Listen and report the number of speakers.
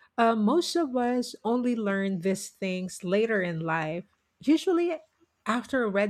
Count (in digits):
1